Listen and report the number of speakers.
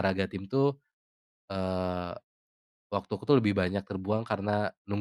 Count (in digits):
1